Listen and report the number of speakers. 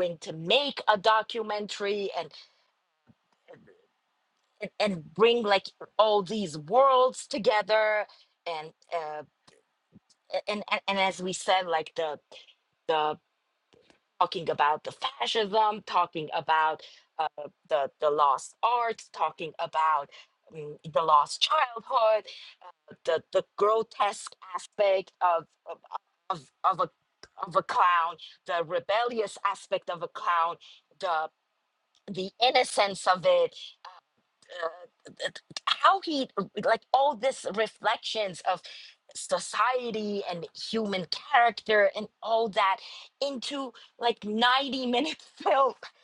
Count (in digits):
1